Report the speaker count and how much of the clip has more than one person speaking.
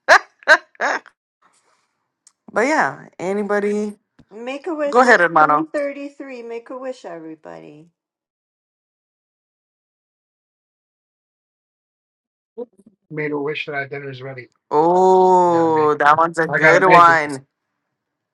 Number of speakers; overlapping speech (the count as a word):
three, about 9%